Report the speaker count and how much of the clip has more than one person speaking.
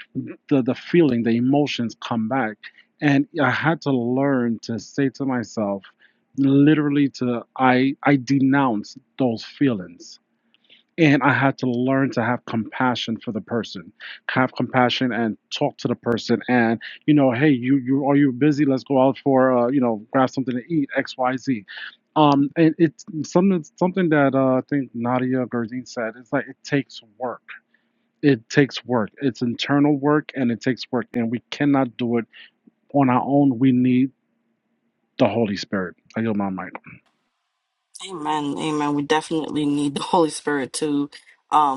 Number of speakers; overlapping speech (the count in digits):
2, no overlap